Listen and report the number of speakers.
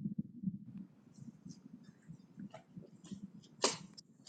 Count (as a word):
zero